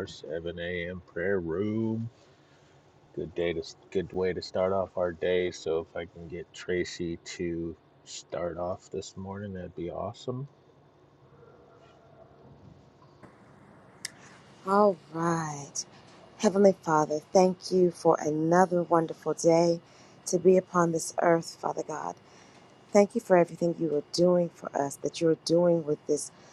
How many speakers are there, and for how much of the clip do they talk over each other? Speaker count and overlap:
2, no overlap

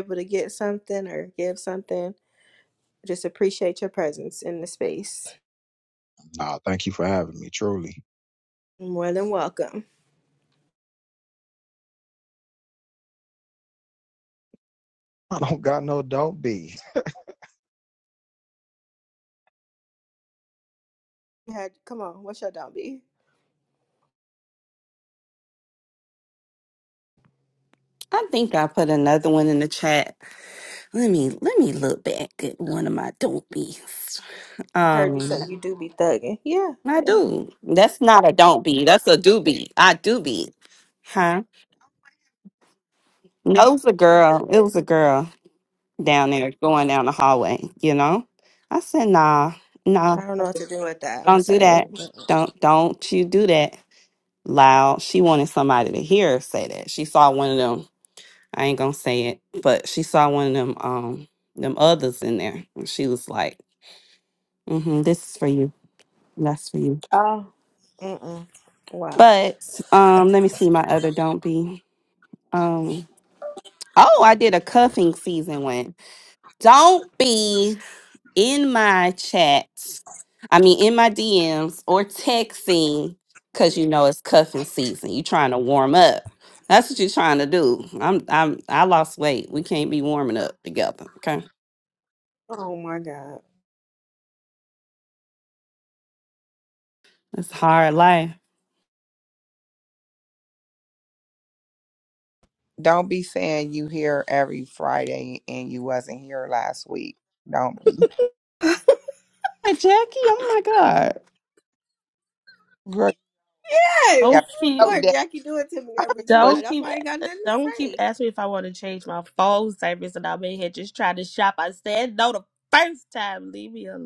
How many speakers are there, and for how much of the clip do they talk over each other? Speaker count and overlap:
5, about 3%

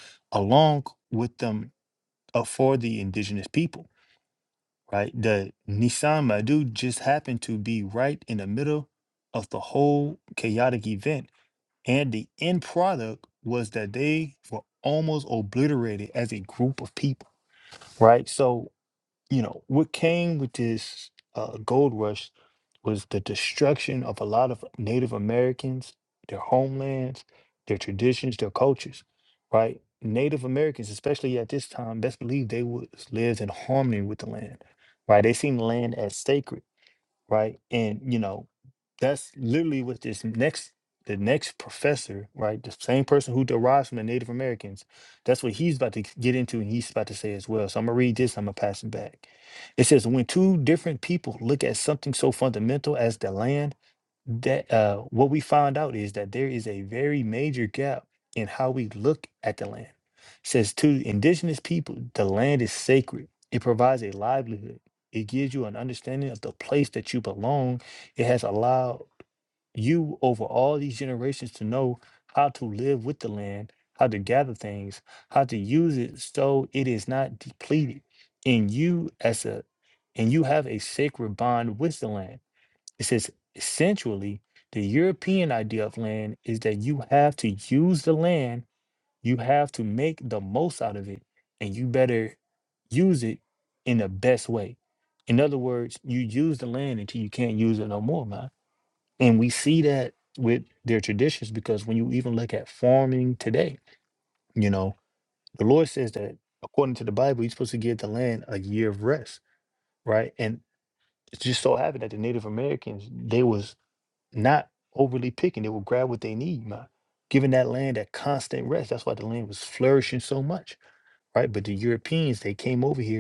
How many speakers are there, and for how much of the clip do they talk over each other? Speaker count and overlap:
1, no overlap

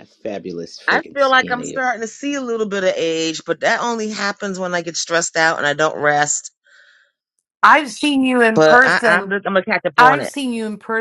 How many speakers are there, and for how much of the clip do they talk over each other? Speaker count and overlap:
3, about 19%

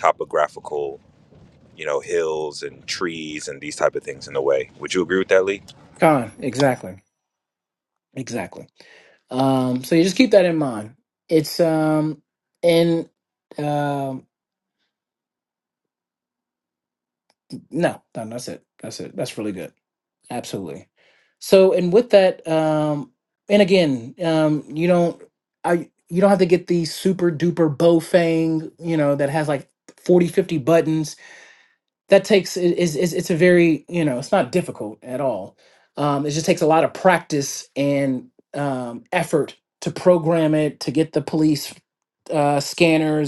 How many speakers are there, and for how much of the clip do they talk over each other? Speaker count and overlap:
2, no overlap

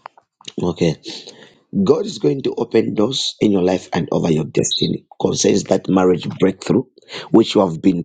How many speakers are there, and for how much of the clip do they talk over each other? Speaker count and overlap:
1, no overlap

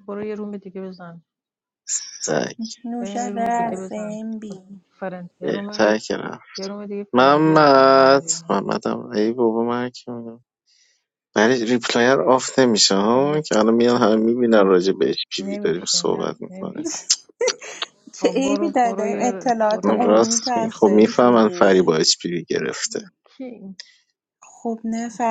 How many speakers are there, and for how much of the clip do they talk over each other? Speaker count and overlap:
3, about 32%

